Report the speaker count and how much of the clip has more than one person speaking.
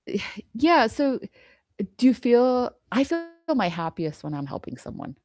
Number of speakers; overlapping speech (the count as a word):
one, no overlap